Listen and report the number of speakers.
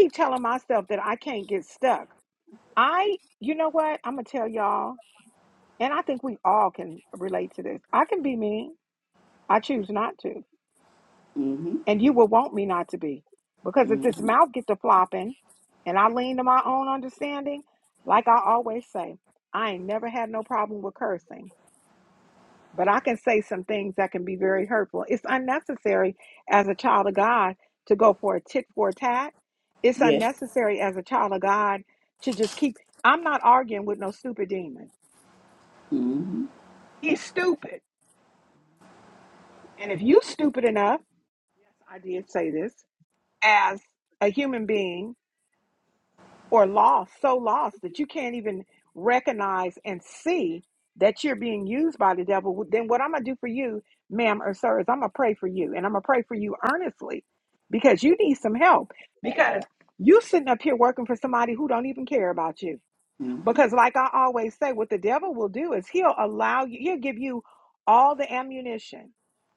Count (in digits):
2